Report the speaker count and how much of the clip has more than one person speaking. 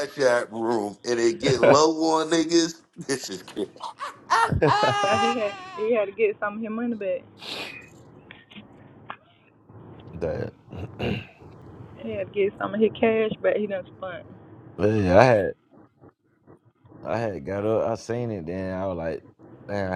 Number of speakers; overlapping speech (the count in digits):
3, no overlap